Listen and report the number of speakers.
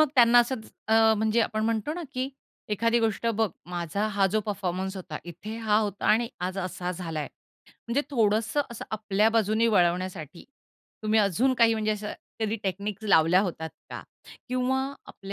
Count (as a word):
one